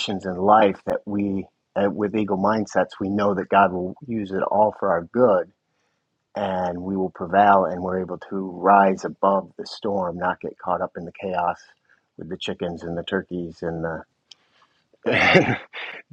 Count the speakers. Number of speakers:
1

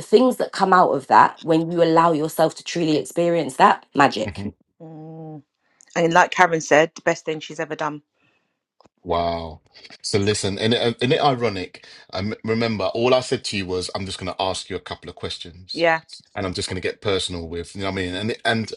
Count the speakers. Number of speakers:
3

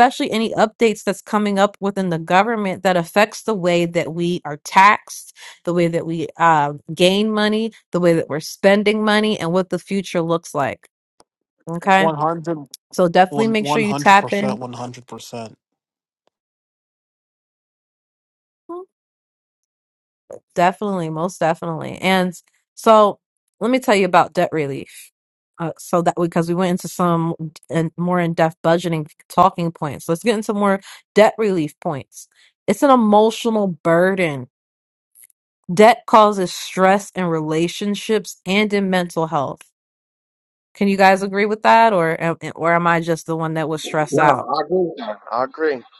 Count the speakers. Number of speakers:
3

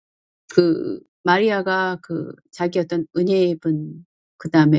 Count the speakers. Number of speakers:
1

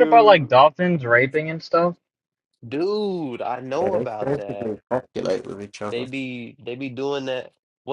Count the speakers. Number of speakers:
3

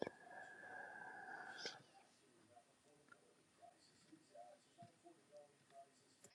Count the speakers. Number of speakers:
0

